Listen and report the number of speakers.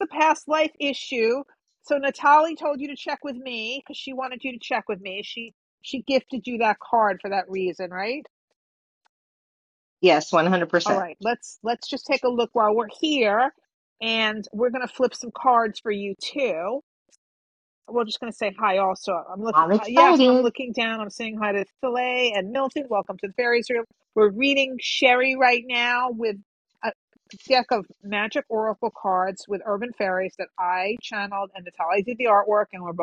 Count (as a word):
two